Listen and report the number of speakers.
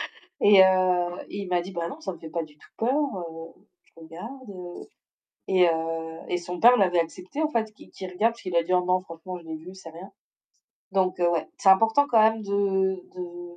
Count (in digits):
1